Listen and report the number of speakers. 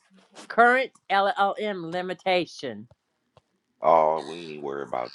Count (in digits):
2